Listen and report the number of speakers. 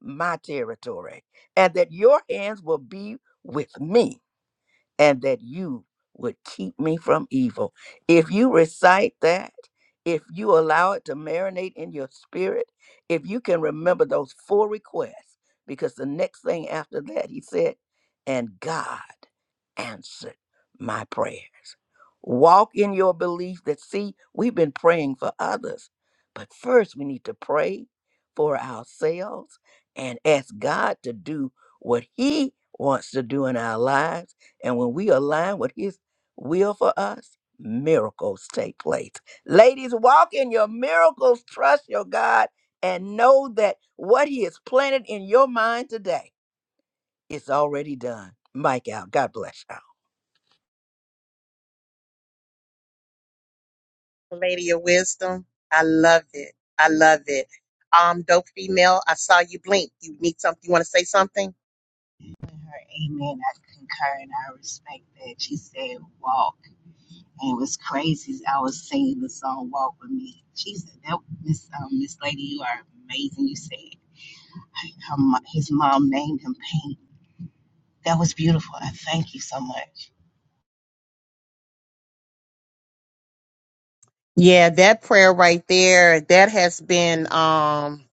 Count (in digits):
3